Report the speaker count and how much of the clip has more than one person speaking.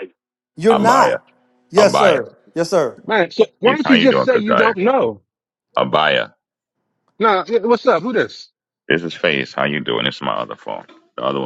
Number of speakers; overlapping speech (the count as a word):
three, about 18%